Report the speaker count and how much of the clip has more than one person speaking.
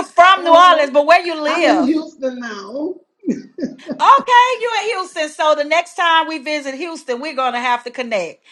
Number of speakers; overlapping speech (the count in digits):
2, about 11%